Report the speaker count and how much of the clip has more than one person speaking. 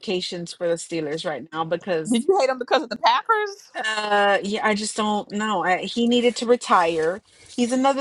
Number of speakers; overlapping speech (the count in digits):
2, no overlap